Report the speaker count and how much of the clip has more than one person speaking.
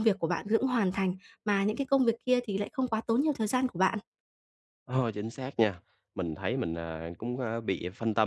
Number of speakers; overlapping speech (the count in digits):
2, no overlap